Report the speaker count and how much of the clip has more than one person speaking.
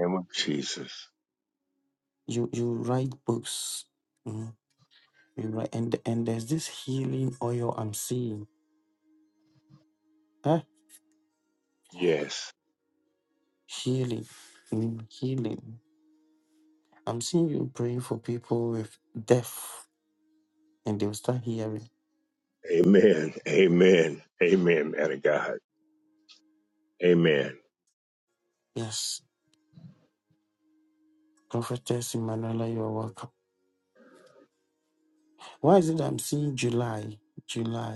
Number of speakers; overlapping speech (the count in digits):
2, no overlap